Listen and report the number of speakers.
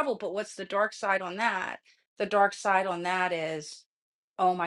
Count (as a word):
one